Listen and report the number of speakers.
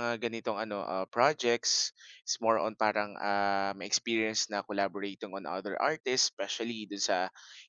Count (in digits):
1